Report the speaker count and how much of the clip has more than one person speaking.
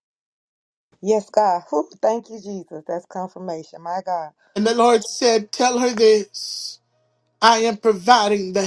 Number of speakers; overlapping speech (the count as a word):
two, no overlap